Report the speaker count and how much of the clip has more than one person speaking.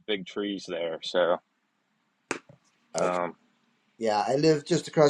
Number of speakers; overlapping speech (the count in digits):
2, about 4%